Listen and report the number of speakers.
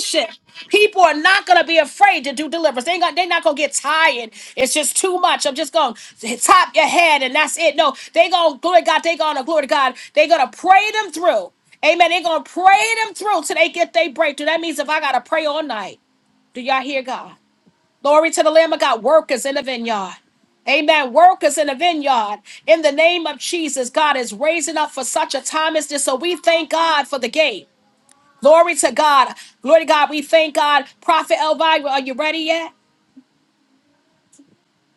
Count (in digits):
1